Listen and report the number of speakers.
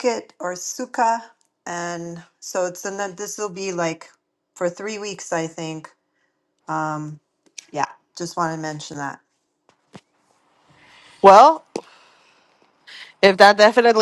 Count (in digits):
2